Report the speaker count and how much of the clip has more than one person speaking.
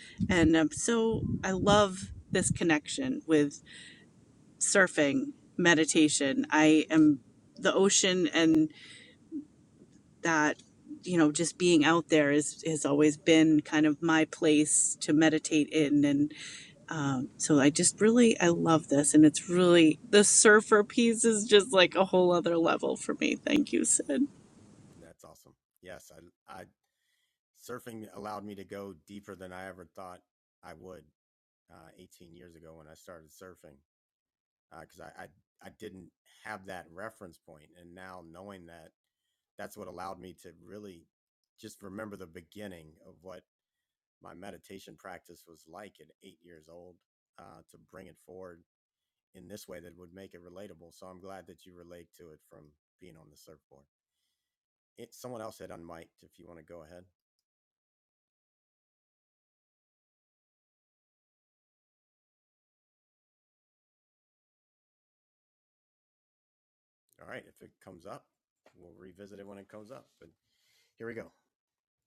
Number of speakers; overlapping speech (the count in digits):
2, no overlap